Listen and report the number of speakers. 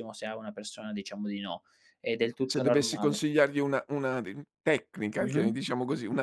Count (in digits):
2